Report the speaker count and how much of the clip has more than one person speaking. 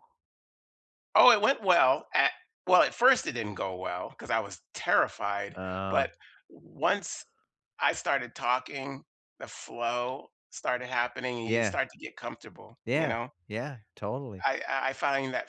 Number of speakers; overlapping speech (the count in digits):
2, about 5%